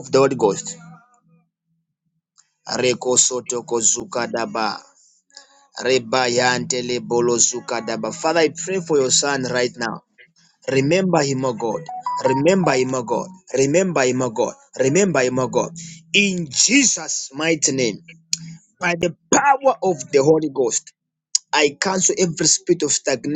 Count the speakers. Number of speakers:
1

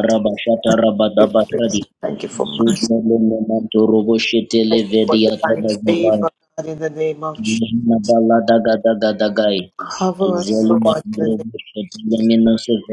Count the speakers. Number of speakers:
2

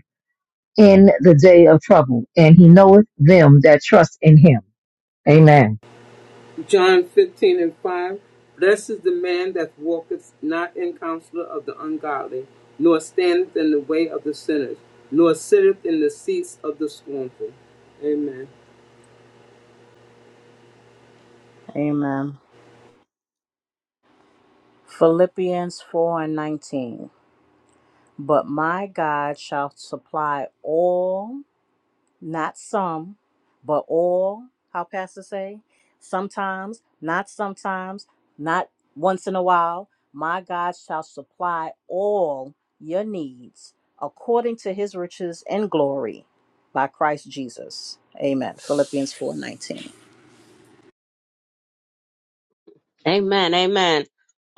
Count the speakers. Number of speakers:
4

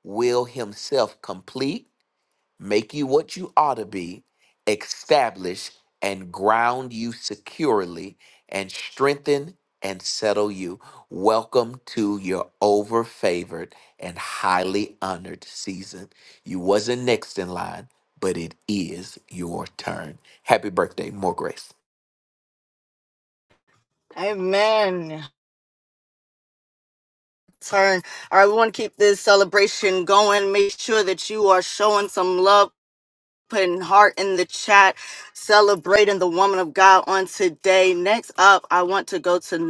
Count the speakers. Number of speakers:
2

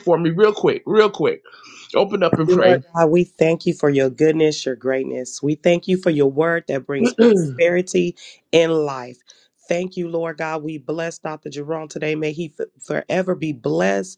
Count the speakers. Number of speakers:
2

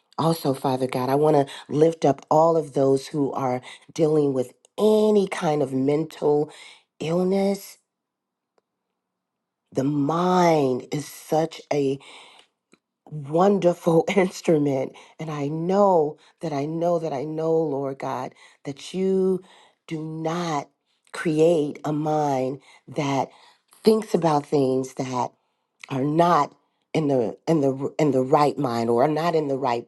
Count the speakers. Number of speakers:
1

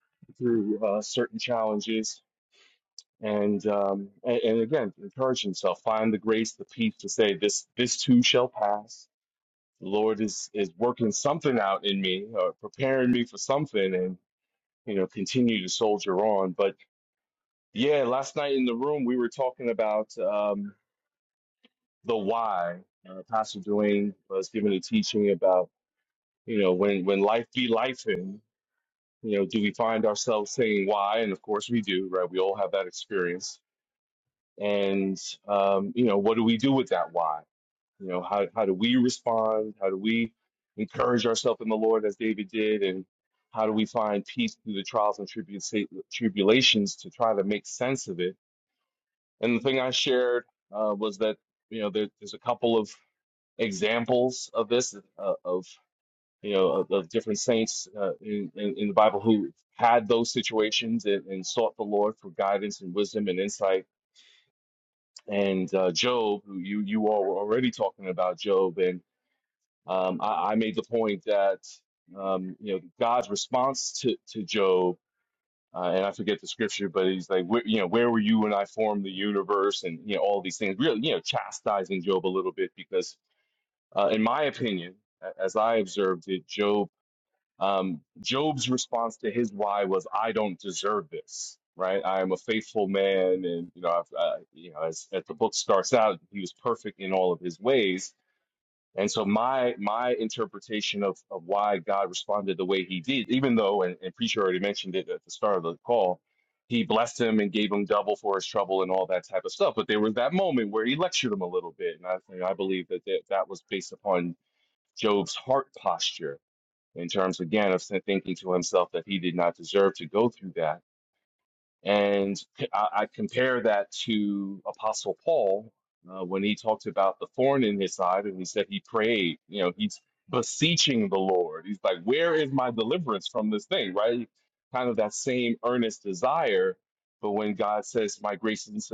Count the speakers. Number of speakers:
1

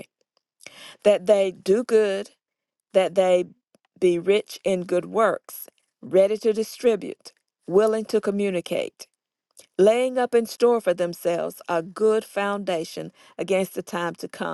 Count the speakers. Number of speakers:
1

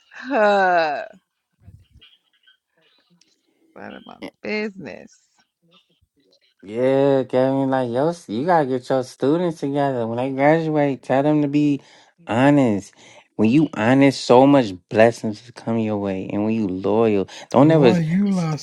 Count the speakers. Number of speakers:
3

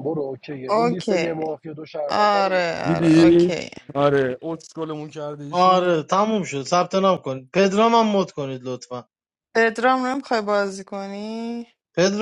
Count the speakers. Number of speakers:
4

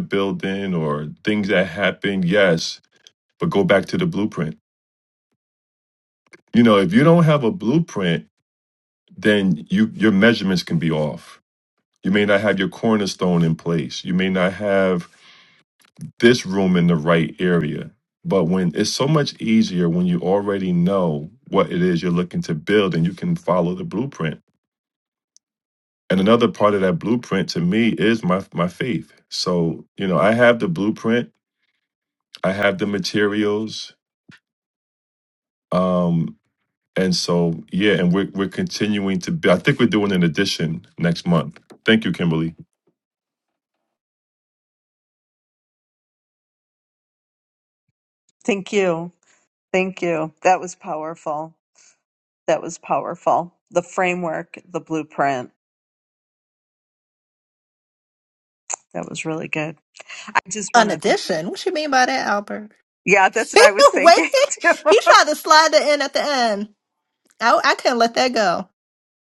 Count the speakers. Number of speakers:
3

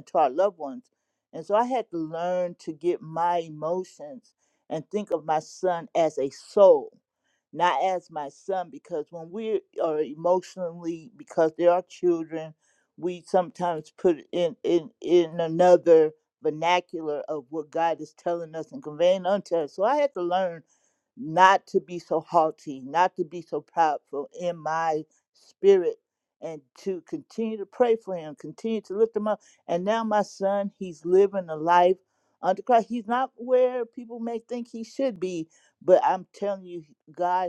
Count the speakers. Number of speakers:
1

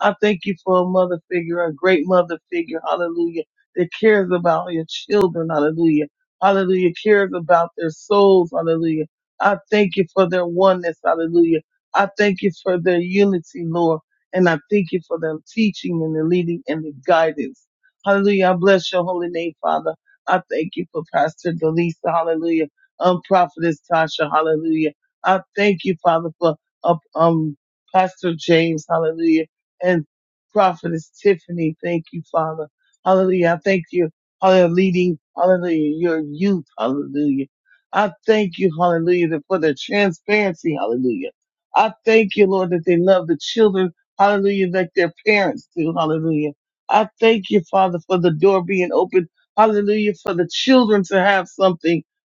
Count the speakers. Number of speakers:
1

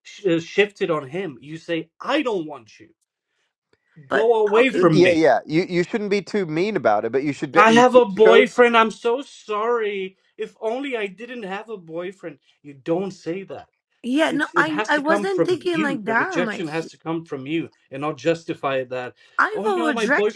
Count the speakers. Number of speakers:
3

